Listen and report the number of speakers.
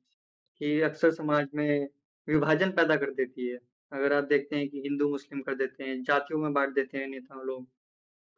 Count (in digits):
1